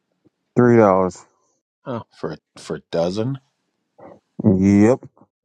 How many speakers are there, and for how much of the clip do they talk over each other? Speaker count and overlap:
two, no overlap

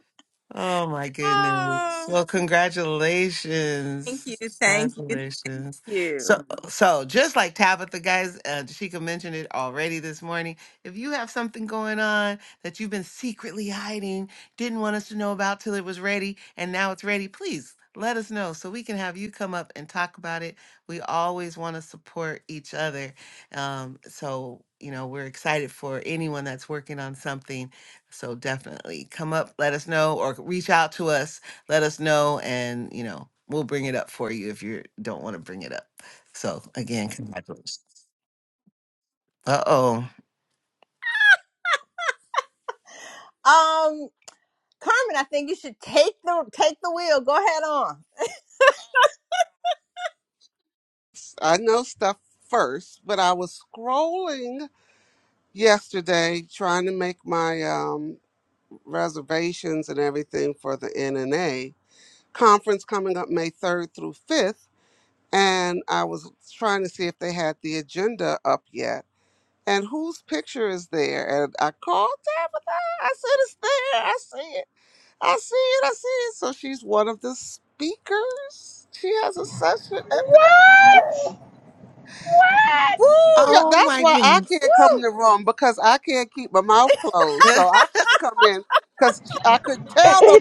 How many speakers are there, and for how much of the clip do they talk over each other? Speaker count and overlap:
four, about 3%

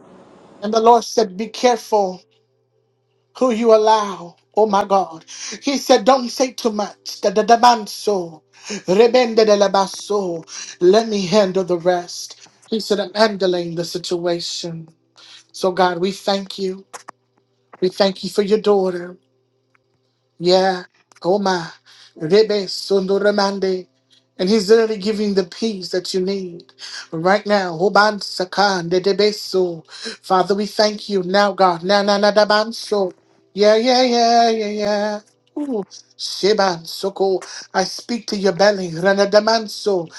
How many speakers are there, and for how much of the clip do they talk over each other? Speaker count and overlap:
one, no overlap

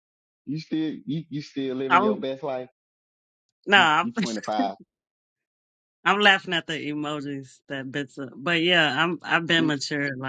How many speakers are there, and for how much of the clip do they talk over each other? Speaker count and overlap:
two, about 8%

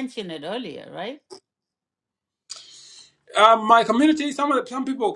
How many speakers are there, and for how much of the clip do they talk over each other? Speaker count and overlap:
two, no overlap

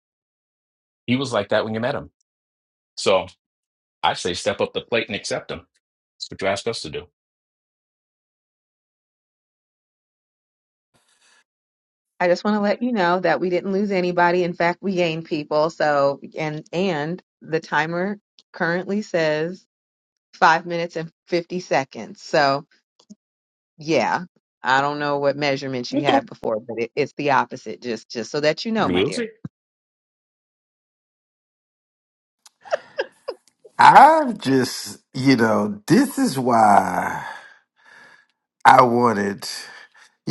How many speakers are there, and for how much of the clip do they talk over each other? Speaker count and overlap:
three, about 2%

